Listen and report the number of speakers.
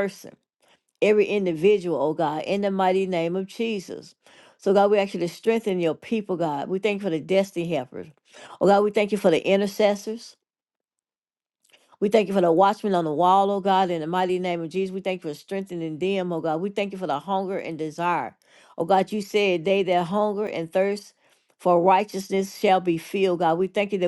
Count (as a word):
one